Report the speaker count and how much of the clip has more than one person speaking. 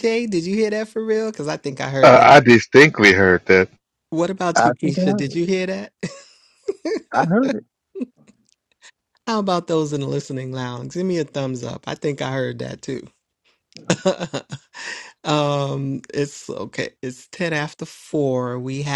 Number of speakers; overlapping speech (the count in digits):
3, about 6%